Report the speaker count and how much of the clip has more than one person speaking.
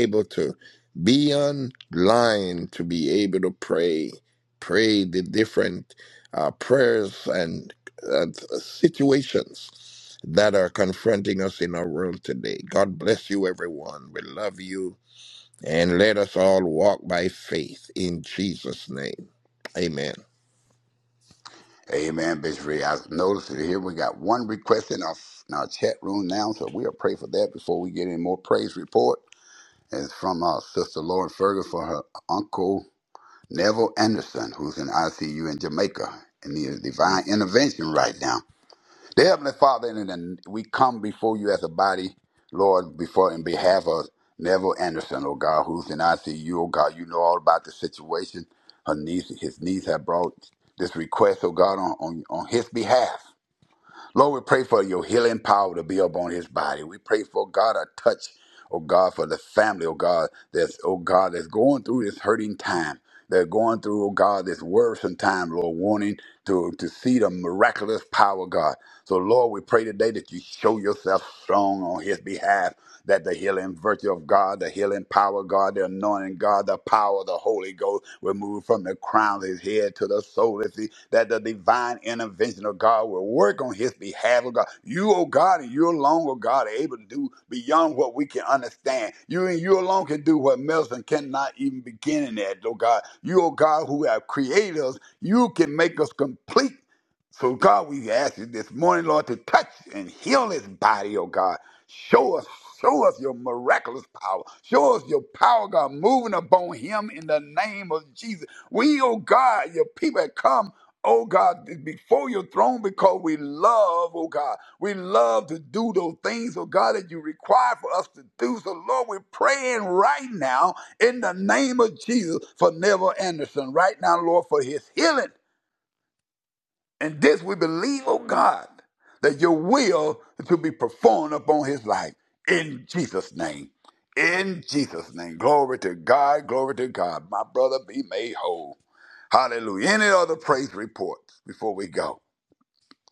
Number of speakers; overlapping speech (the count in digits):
2, under 1%